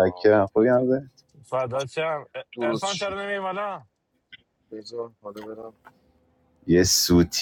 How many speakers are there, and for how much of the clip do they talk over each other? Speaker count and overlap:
3, about 9%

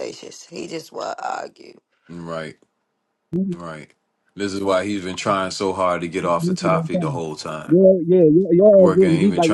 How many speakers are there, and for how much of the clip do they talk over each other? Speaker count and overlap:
3, about 8%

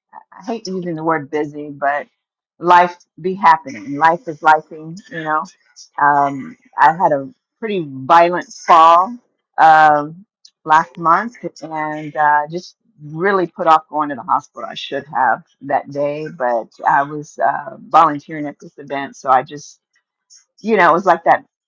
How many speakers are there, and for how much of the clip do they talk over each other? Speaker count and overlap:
1, no overlap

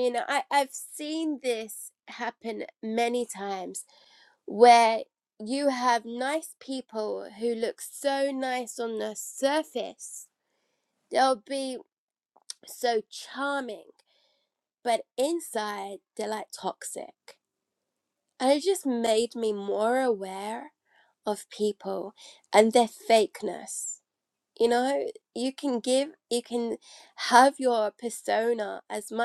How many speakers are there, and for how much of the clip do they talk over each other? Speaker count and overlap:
1, no overlap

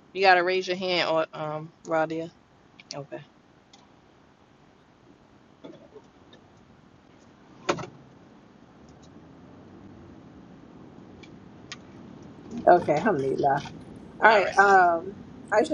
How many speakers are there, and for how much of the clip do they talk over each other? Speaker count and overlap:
2, about 2%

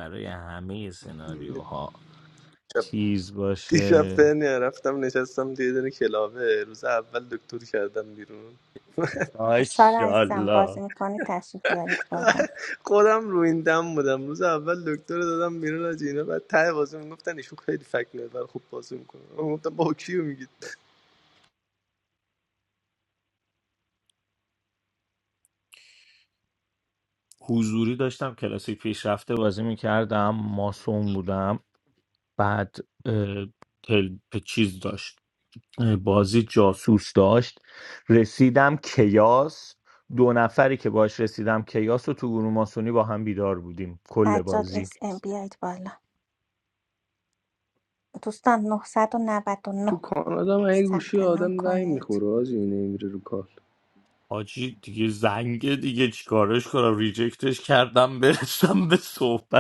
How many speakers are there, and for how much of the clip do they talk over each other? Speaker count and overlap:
3, about 6%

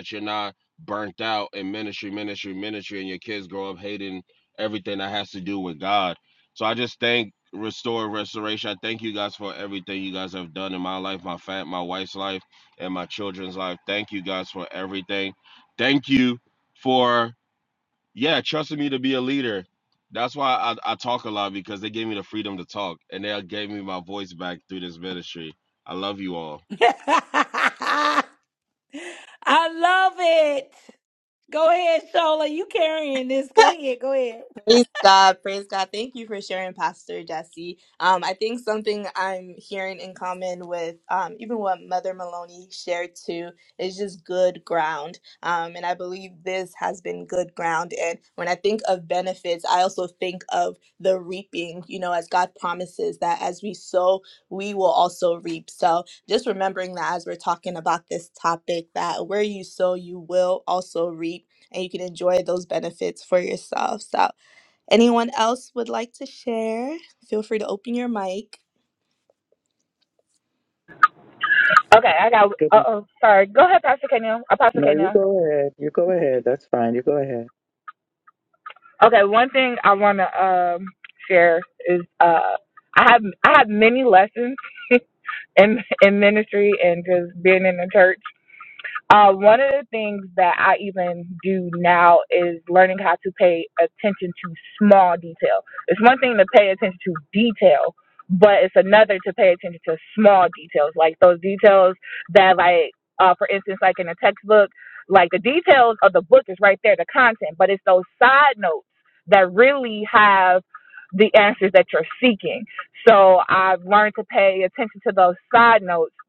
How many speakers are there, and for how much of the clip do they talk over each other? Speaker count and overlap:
5, about 1%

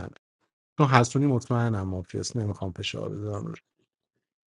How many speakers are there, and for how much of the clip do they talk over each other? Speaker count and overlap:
1, no overlap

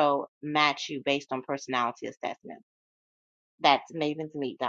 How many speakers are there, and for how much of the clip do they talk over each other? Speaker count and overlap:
1, no overlap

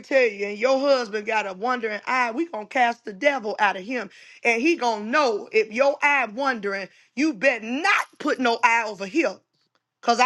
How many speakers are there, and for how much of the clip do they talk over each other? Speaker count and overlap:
1, no overlap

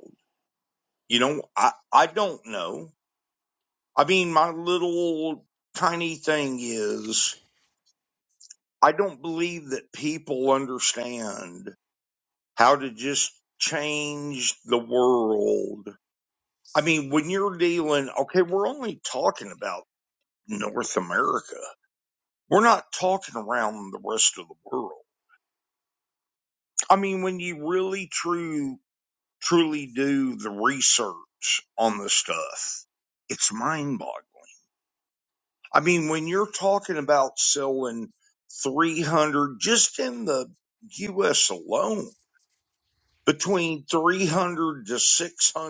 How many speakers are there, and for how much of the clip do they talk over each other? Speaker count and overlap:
1, no overlap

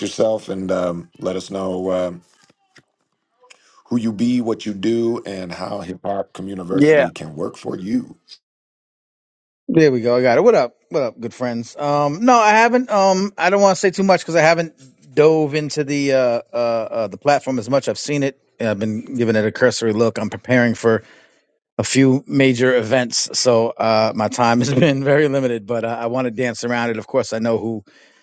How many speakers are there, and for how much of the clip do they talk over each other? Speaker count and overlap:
2, about 1%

